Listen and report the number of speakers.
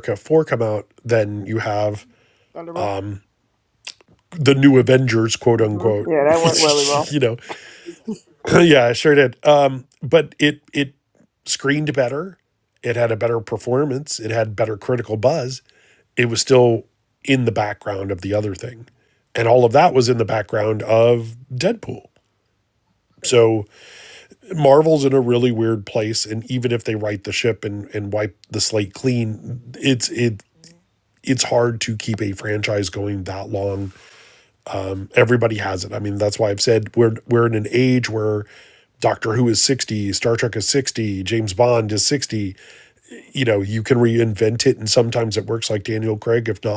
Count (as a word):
two